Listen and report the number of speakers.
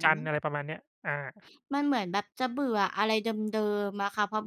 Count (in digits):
2